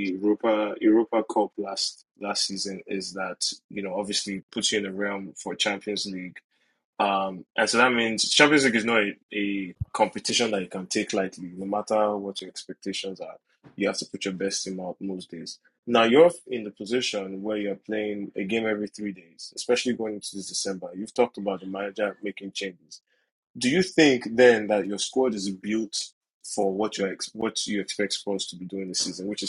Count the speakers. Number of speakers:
one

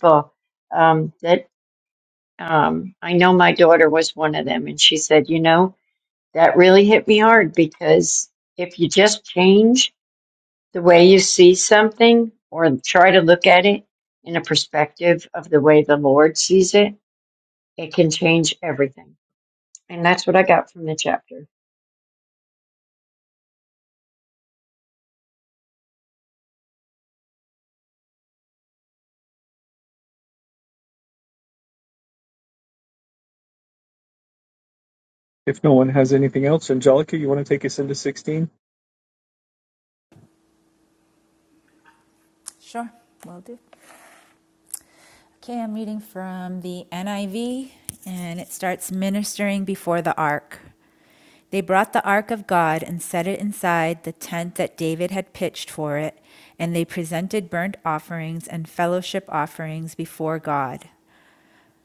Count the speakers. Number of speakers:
three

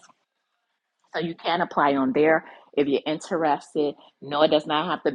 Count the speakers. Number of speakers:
one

